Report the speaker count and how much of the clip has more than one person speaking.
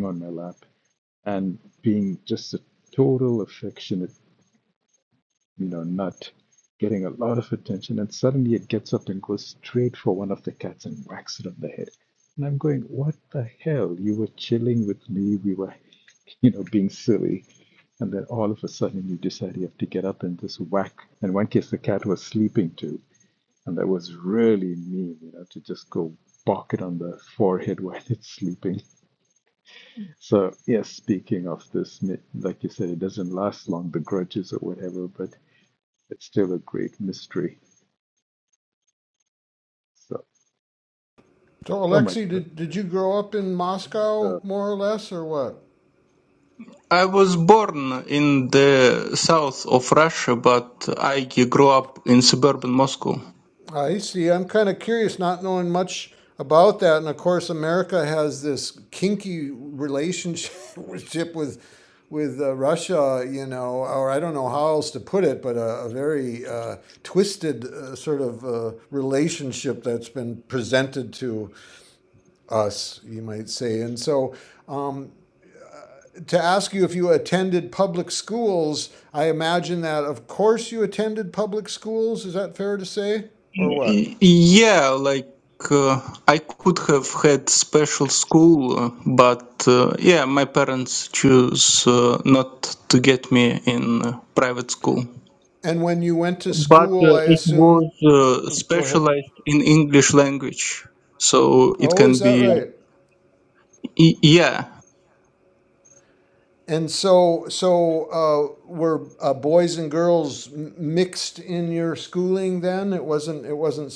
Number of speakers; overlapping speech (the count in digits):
3, about 3%